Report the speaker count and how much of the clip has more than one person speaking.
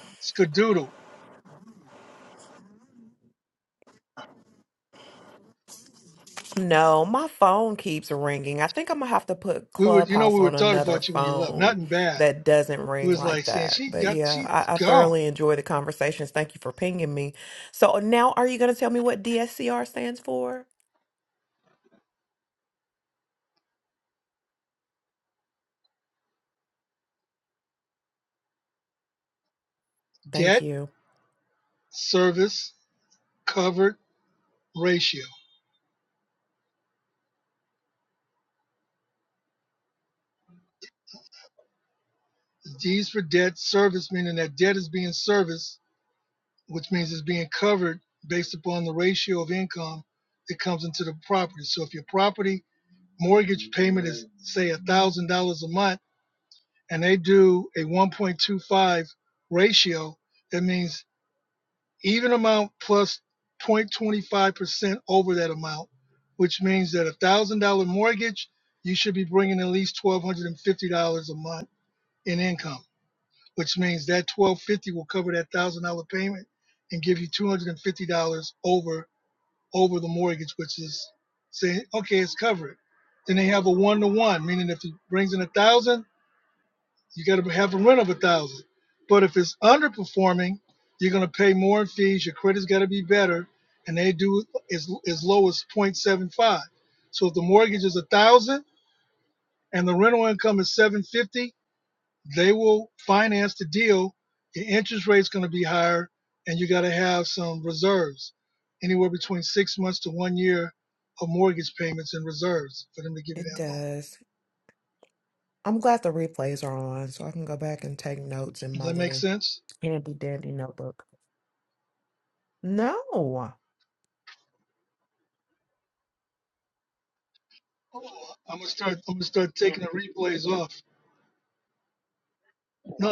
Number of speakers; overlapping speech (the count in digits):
2, about 4%